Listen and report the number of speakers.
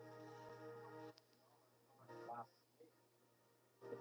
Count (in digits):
0